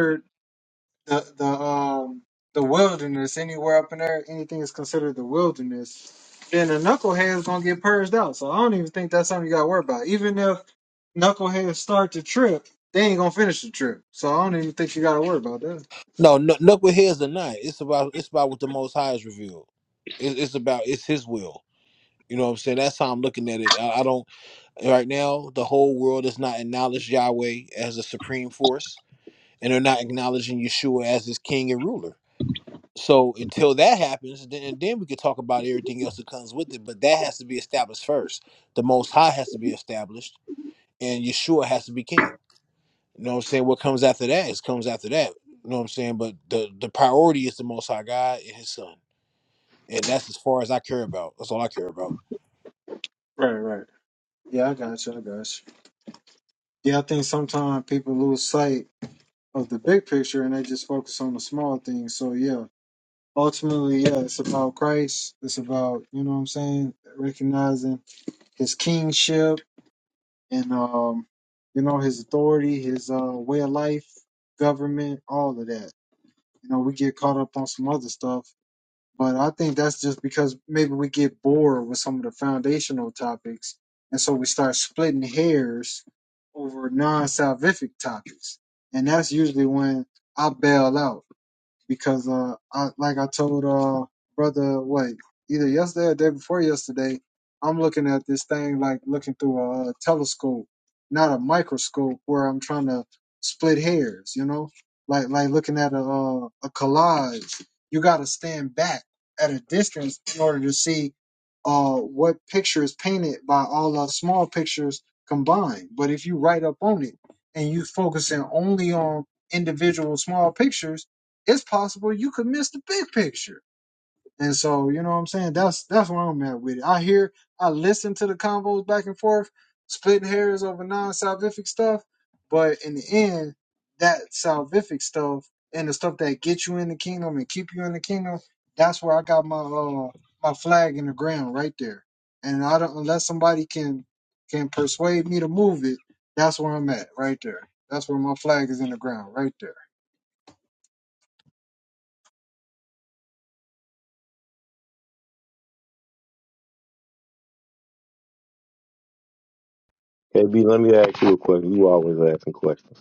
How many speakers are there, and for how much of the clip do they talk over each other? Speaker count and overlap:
three, no overlap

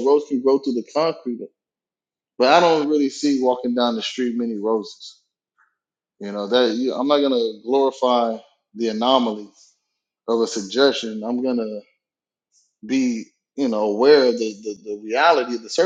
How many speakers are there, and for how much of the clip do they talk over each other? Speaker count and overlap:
one, no overlap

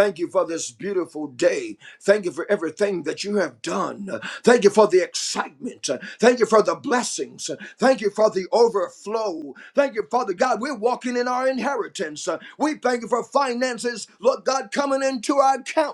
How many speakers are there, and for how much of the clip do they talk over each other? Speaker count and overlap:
one, no overlap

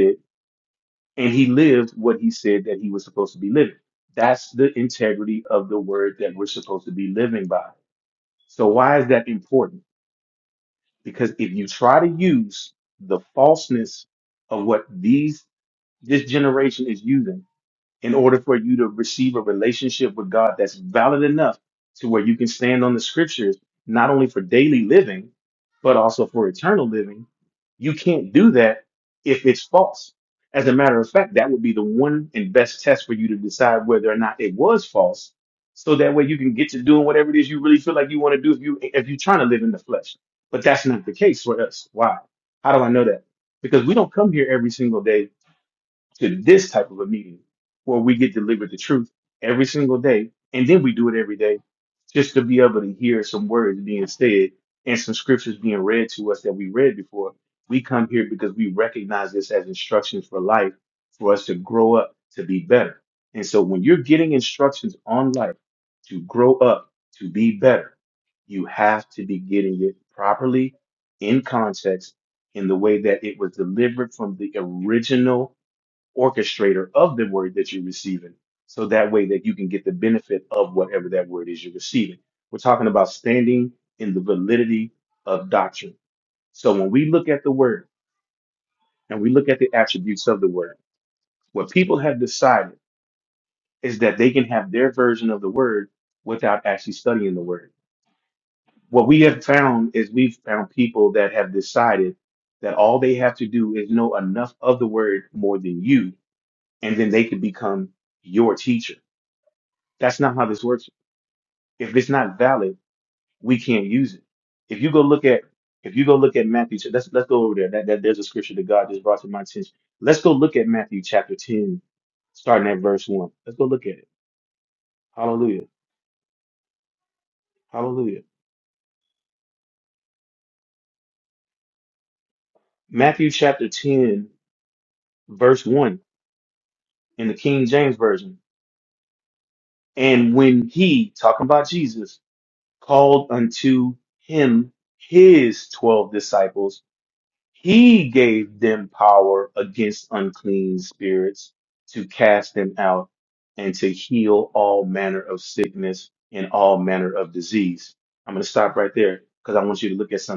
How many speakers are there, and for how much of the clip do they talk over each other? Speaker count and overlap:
one, no overlap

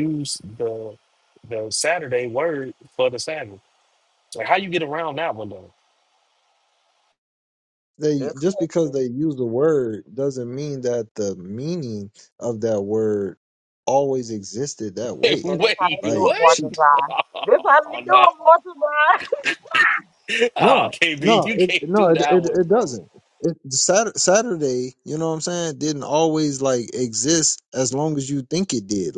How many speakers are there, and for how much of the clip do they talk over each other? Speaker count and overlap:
three, about 15%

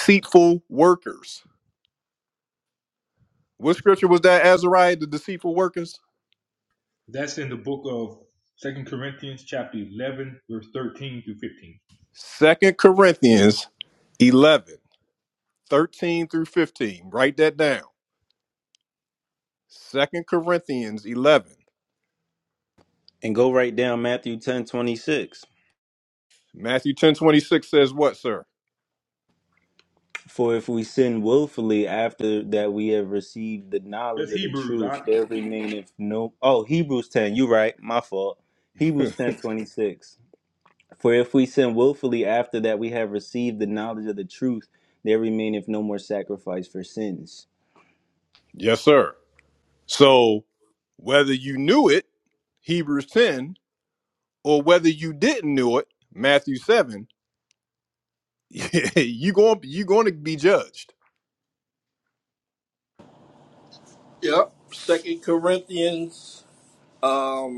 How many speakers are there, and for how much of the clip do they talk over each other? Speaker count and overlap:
four, about 1%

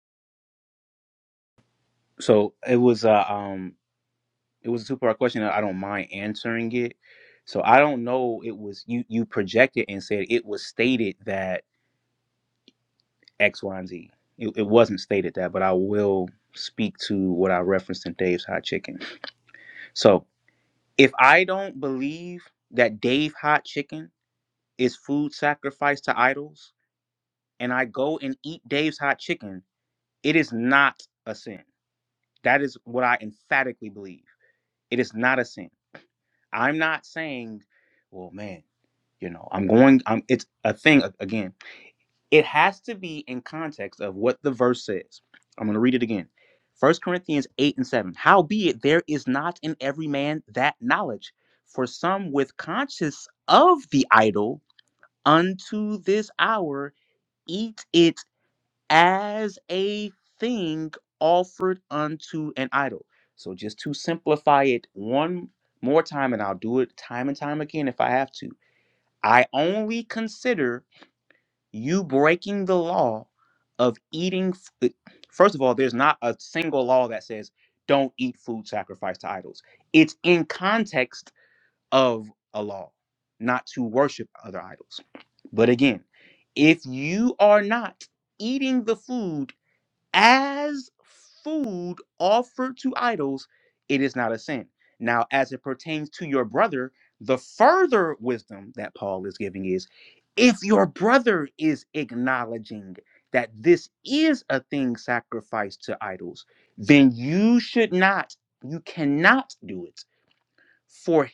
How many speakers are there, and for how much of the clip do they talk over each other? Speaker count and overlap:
one, no overlap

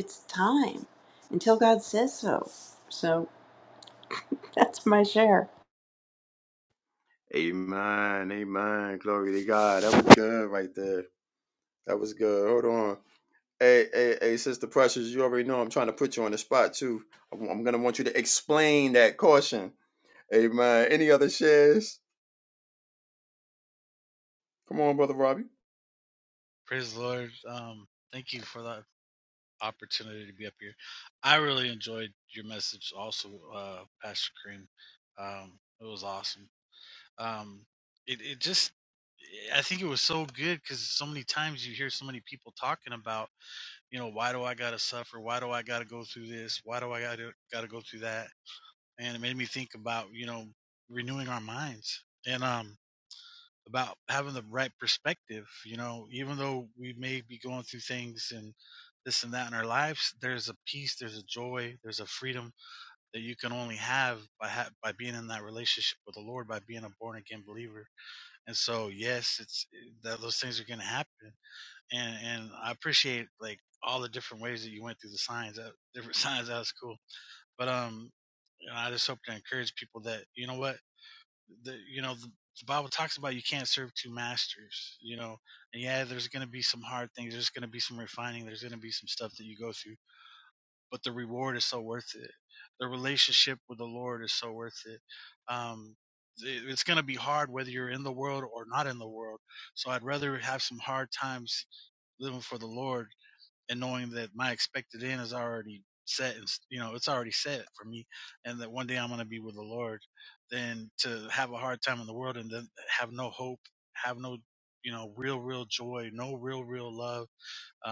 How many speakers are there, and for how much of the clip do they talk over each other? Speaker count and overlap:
three, no overlap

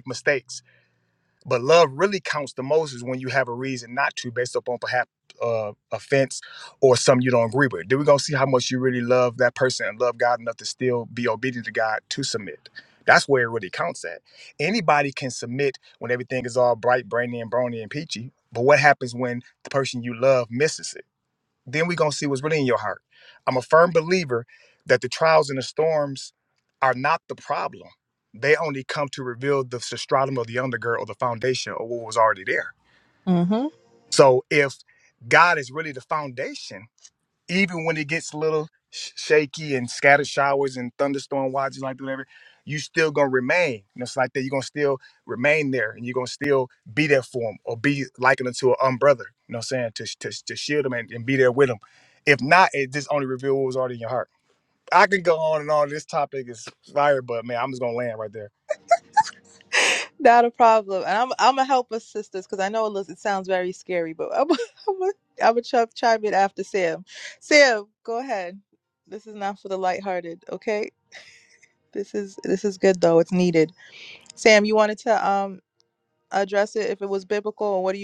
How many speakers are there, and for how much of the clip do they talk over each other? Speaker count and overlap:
two, no overlap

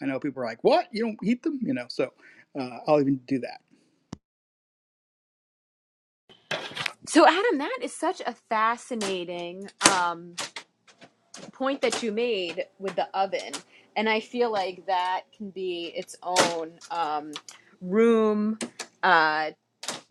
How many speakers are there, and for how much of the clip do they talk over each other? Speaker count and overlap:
two, no overlap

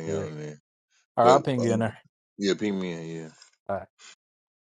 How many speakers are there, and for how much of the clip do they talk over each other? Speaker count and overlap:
two, about 15%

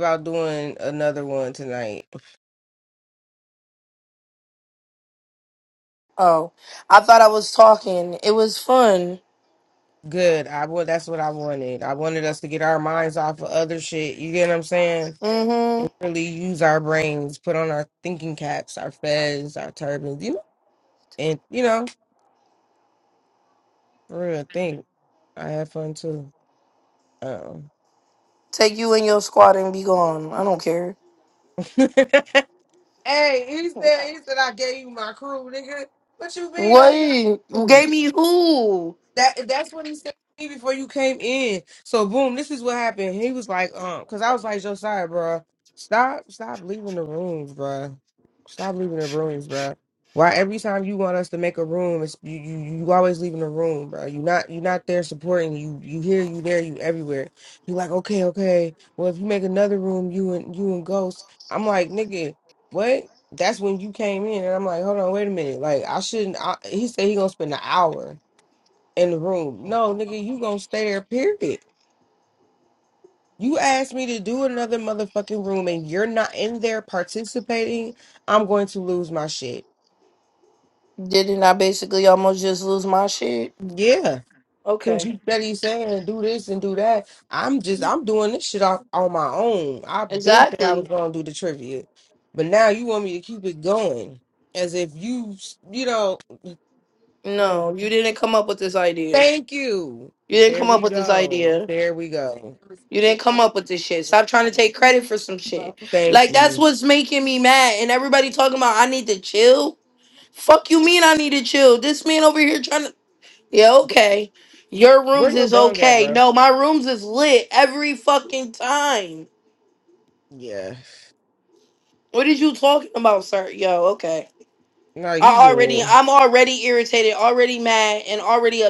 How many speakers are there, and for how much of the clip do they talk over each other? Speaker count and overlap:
two, about 4%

